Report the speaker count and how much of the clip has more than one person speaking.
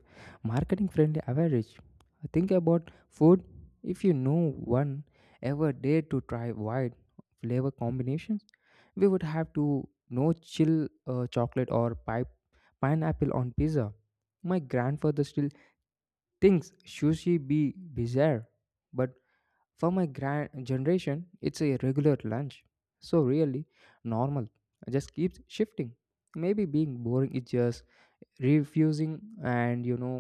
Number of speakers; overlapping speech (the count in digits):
1, no overlap